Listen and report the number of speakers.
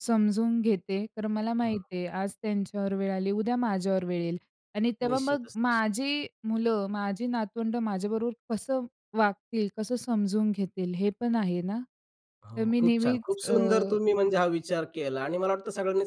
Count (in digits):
2